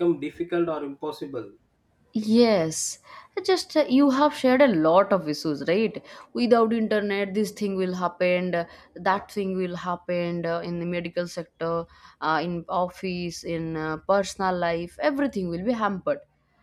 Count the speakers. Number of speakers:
2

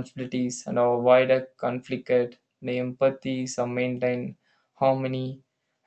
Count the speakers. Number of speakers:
1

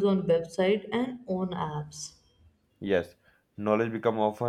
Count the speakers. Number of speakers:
2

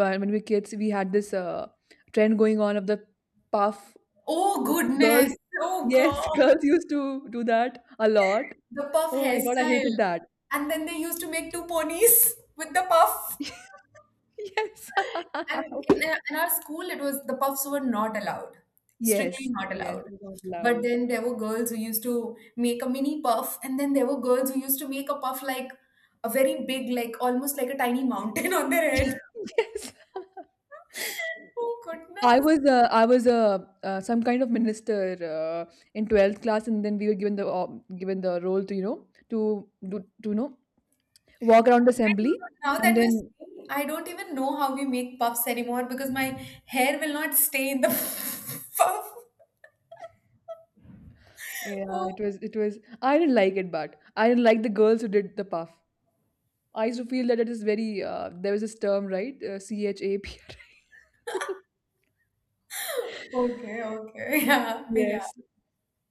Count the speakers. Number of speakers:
2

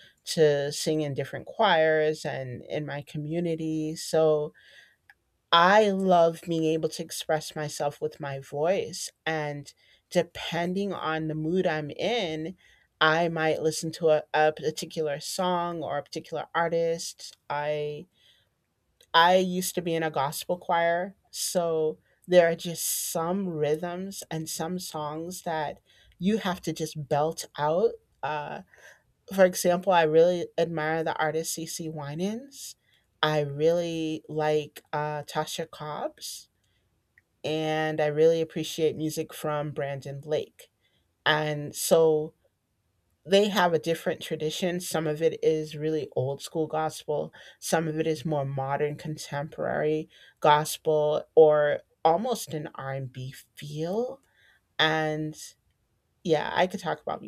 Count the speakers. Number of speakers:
1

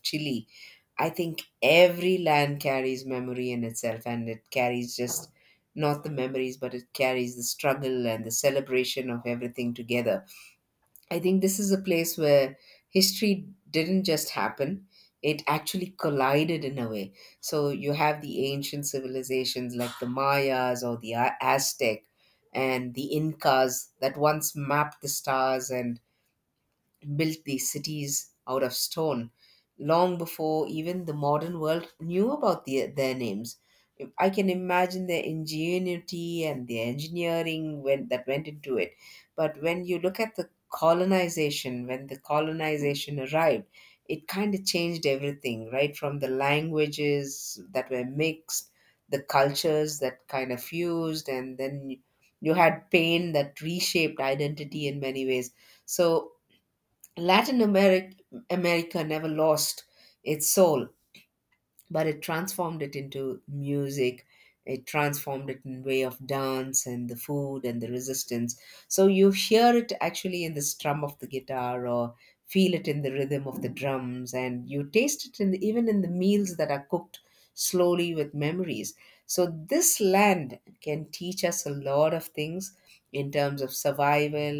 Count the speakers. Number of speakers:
1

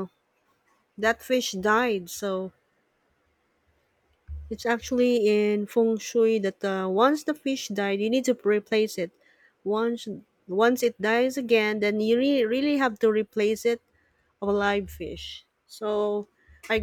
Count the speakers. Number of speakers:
1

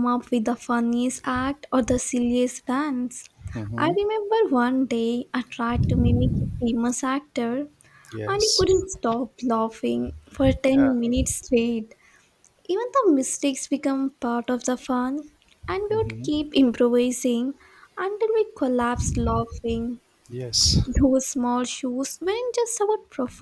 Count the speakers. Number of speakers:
2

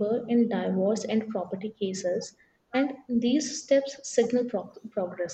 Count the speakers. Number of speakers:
1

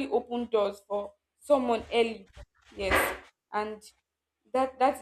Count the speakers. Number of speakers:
1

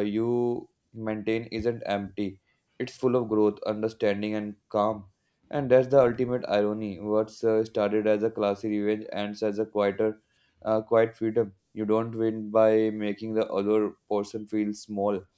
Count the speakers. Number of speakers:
1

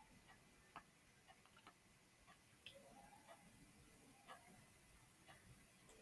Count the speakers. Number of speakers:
0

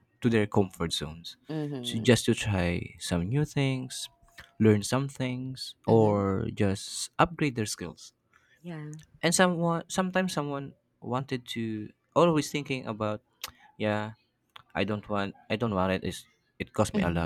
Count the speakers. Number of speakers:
2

